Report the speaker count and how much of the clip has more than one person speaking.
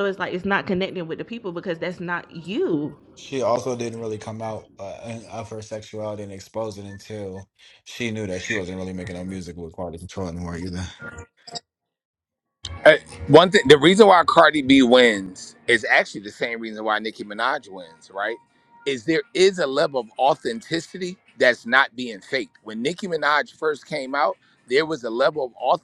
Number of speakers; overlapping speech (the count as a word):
three, no overlap